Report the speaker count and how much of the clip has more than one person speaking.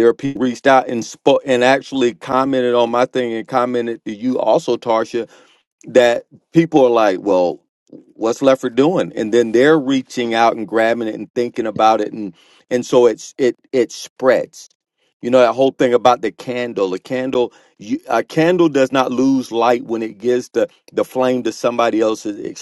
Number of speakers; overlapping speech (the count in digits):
1, no overlap